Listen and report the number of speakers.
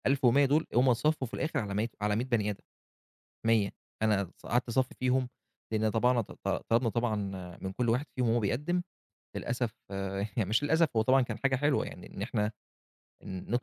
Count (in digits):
1